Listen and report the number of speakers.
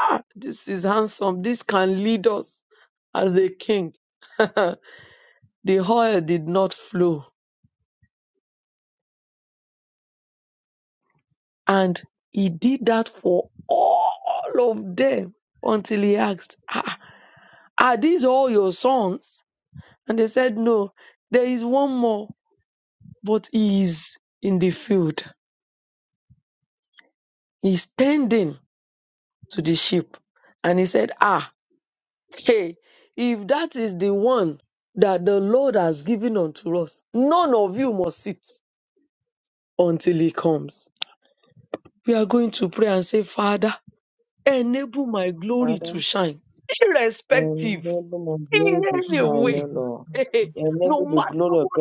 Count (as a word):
two